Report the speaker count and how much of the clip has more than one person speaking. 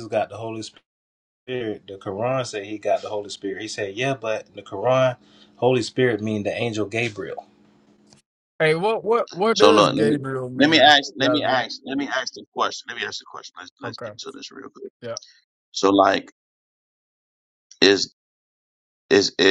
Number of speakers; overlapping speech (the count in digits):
3, about 9%